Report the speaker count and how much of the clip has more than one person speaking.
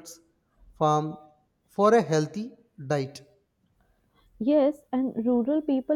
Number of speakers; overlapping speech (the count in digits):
2, no overlap